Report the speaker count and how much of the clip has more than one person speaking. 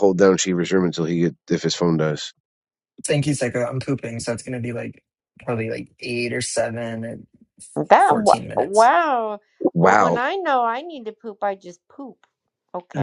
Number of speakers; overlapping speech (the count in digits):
3, about 8%